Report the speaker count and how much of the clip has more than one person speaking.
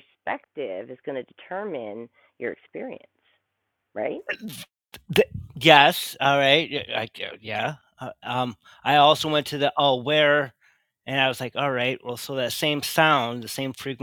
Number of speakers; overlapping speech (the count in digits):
2, no overlap